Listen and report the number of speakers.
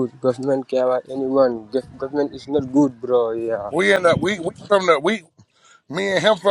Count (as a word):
two